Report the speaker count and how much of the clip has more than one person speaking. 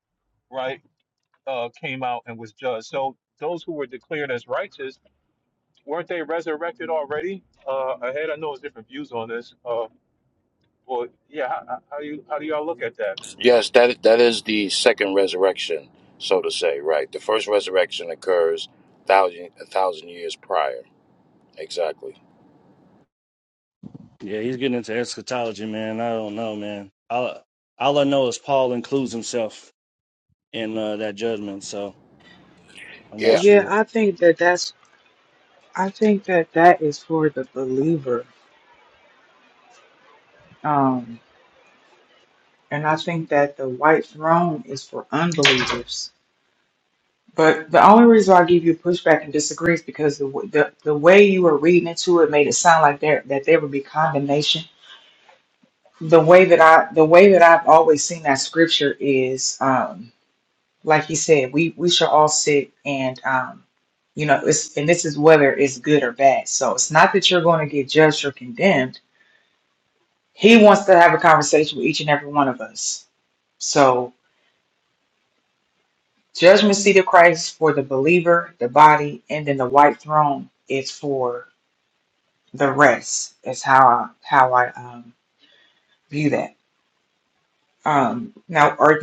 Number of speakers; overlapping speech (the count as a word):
four, about 1%